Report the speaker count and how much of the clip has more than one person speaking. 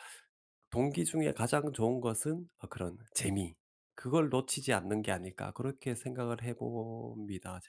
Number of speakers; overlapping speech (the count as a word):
one, no overlap